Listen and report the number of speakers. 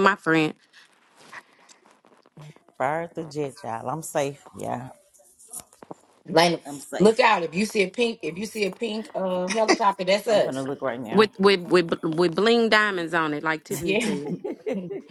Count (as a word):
three